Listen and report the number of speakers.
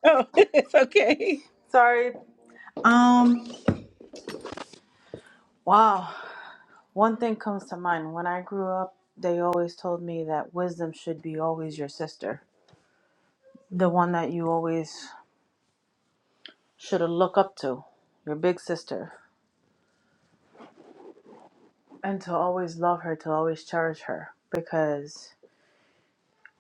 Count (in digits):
2